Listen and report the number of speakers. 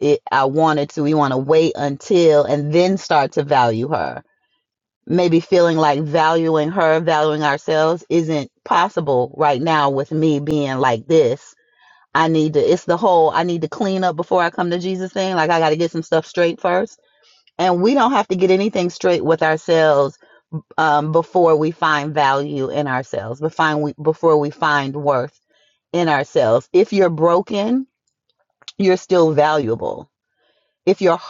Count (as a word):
one